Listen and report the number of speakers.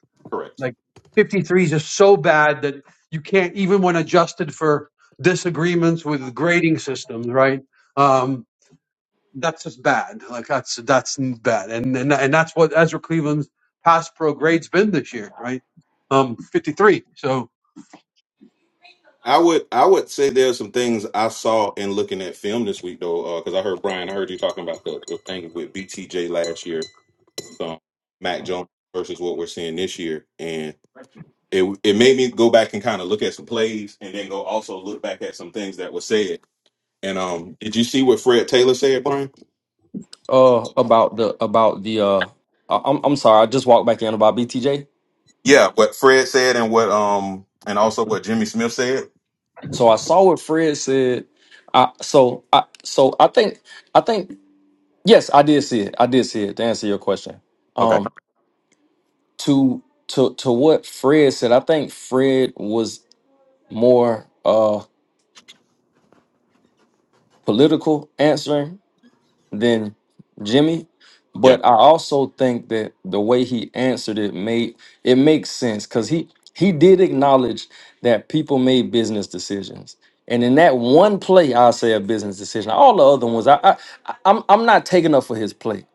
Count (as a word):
three